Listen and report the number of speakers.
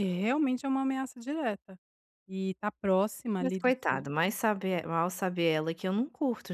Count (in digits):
2